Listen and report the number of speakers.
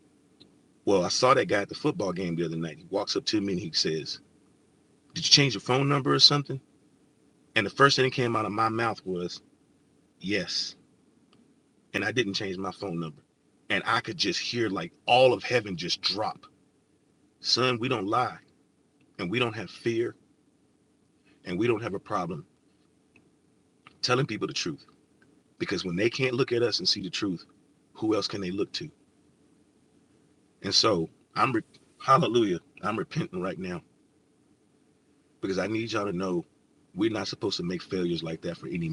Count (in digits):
1